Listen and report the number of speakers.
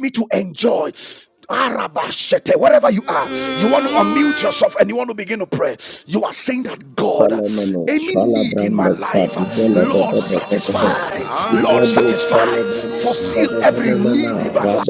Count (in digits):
3